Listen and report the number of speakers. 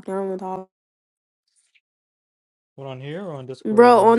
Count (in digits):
2